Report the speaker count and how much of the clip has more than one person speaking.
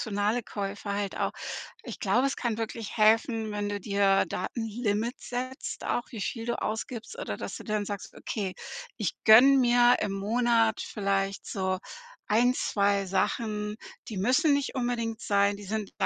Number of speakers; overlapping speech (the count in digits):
1, no overlap